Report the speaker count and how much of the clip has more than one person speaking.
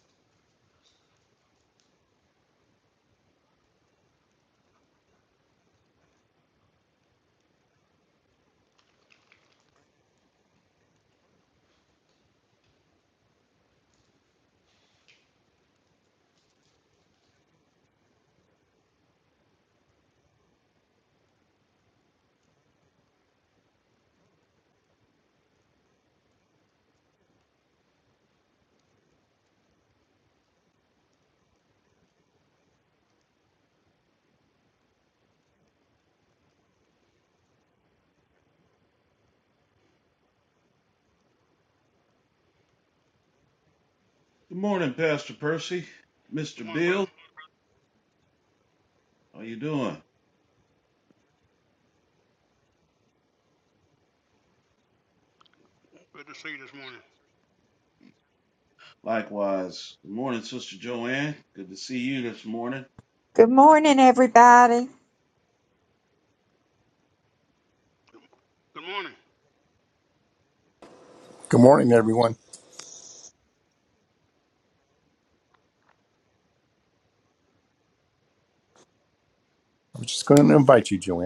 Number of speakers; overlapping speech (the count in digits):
4, about 1%